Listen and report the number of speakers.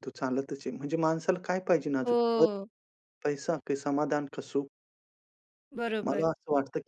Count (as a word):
two